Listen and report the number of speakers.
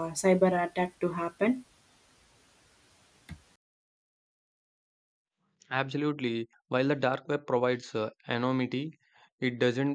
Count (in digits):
2